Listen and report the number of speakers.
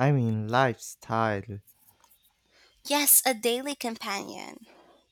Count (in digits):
2